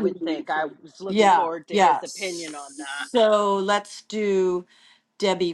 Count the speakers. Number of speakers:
2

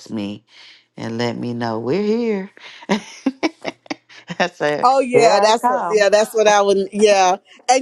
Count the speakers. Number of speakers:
2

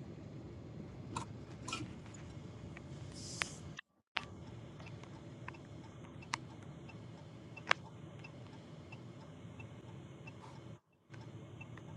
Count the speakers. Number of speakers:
0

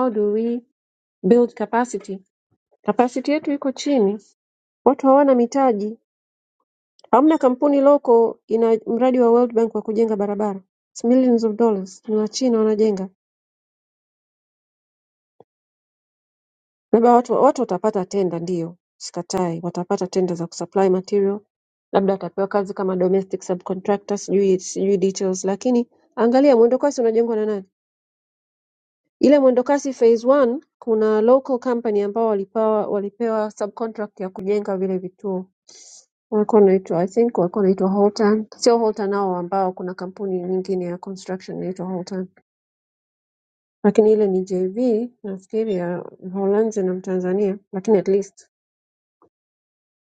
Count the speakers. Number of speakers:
1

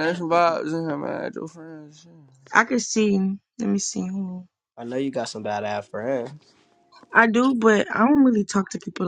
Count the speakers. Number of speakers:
3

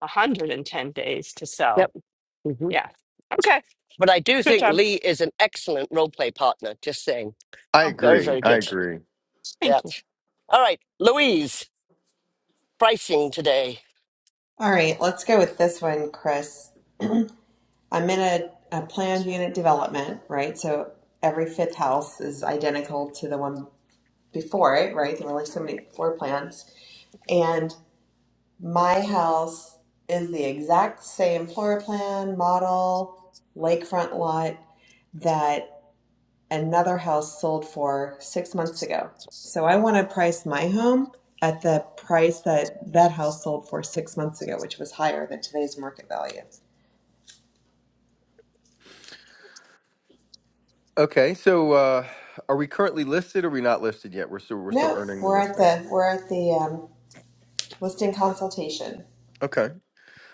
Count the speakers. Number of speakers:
4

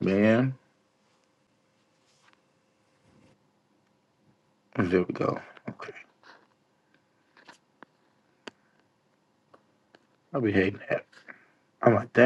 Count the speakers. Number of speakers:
1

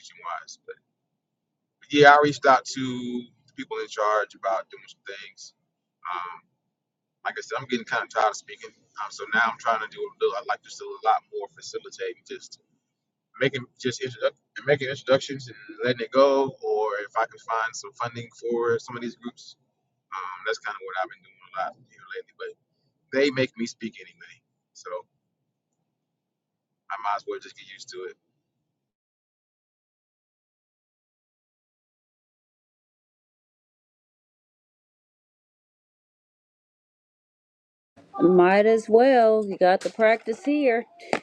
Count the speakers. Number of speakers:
2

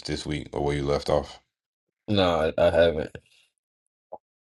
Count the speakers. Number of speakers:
2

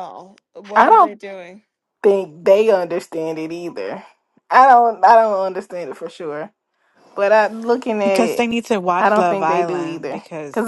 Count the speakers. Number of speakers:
3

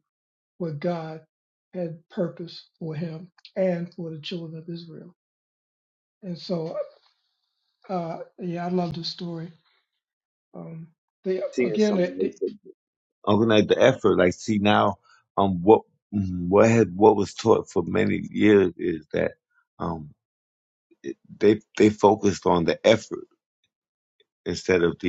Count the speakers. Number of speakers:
2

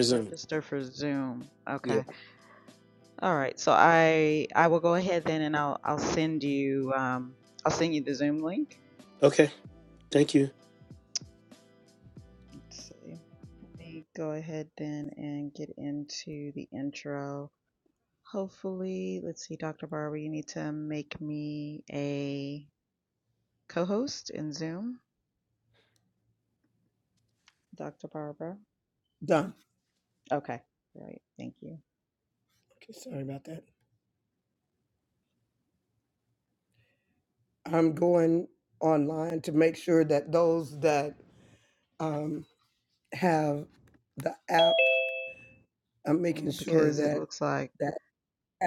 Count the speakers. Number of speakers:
3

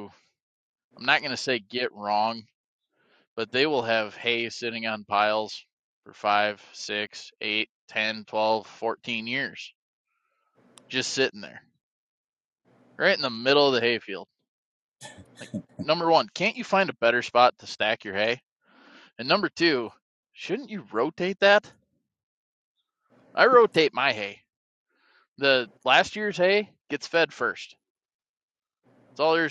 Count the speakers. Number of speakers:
1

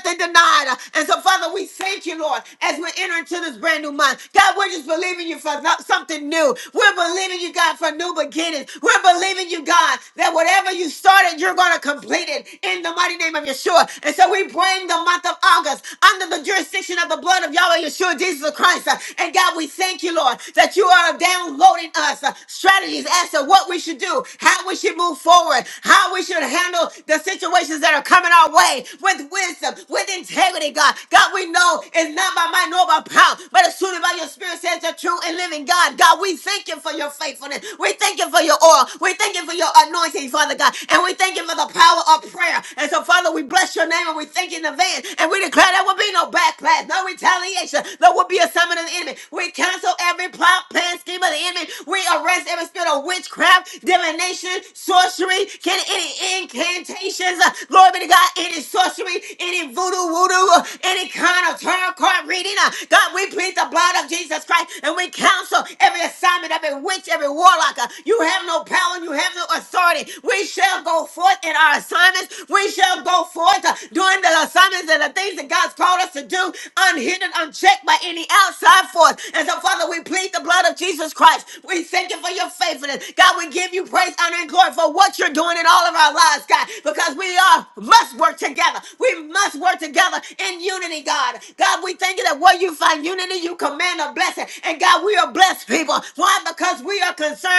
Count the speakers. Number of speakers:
1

